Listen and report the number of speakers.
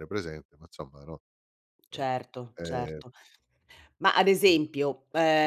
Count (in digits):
2